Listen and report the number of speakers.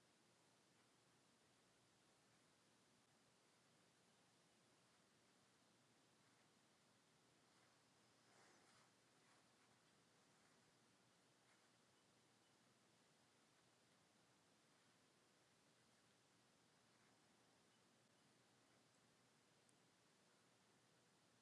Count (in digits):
0